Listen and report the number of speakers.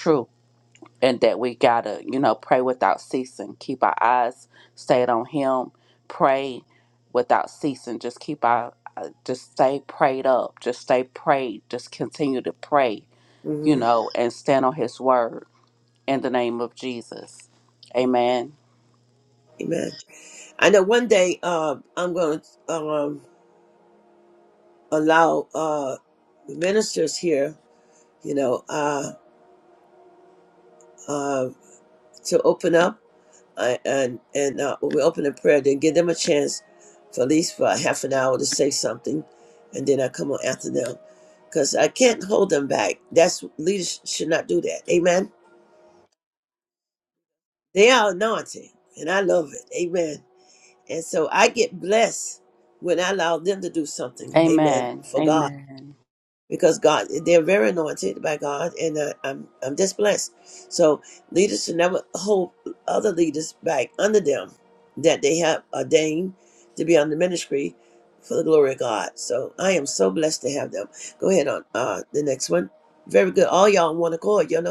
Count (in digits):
2